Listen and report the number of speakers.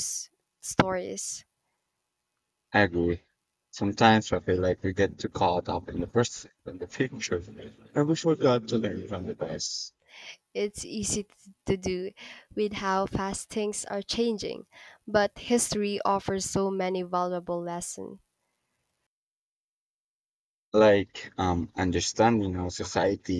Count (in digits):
2